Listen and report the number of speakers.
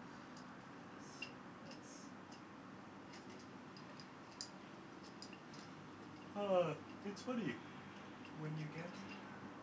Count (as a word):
one